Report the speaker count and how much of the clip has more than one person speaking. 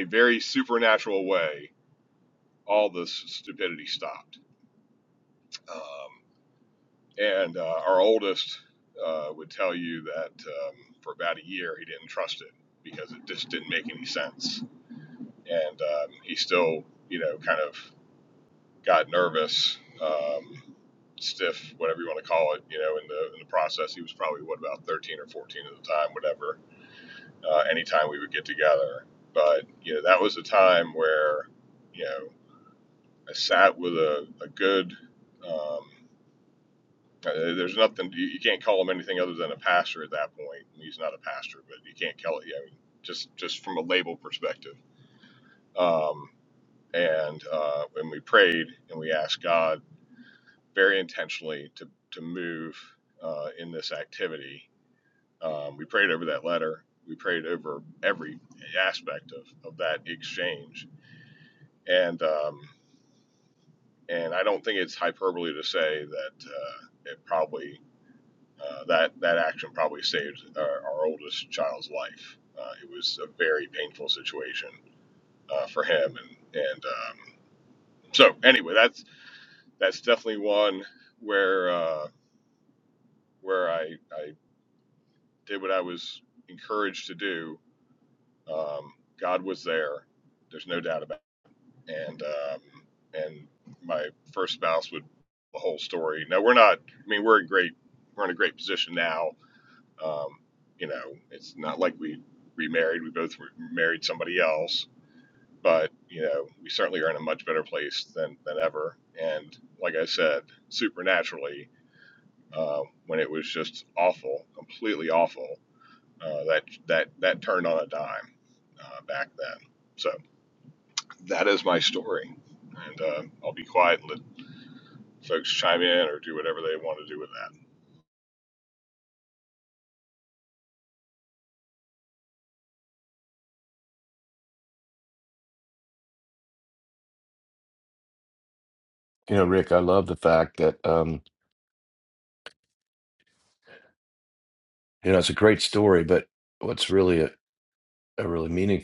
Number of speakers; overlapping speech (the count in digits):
2, no overlap